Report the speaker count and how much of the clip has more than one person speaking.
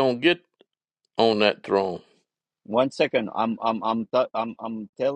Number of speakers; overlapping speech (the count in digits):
2, no overlap